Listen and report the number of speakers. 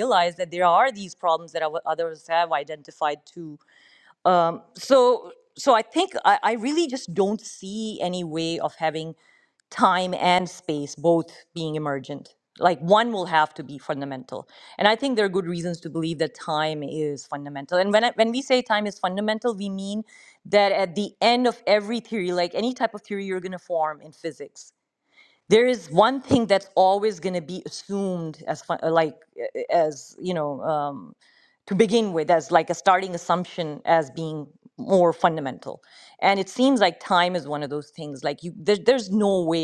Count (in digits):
1